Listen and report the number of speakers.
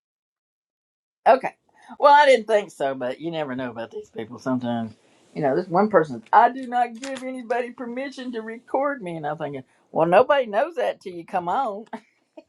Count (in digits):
1